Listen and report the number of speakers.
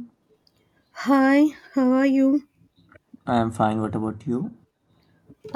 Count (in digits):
2